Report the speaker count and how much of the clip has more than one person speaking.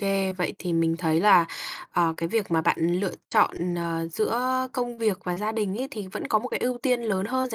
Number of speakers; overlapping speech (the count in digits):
1, no overlap